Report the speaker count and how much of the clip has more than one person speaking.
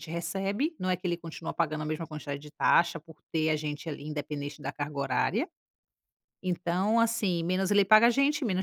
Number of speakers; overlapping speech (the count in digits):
1, no overlap